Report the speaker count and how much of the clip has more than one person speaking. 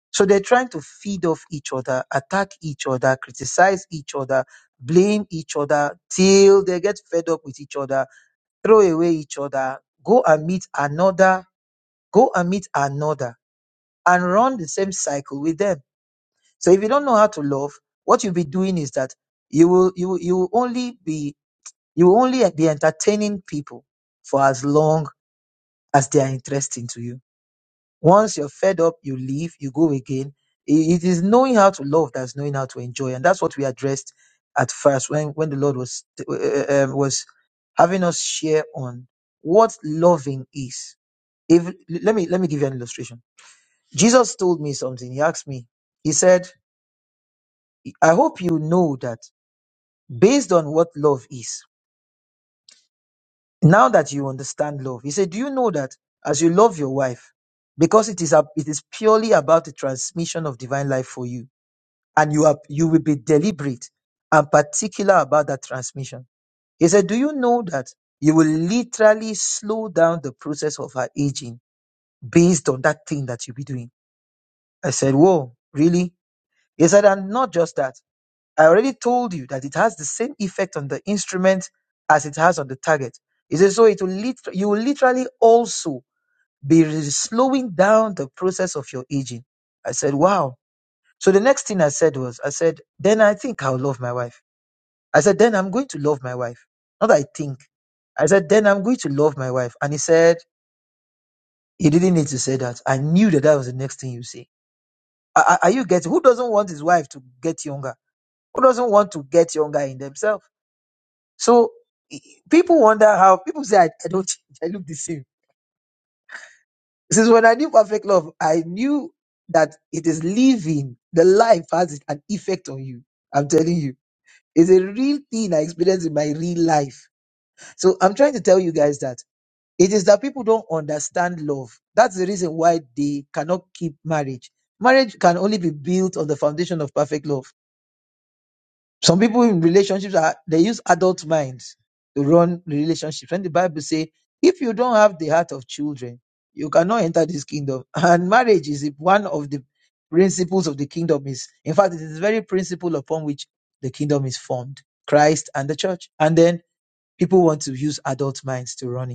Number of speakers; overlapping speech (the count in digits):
1, no overlap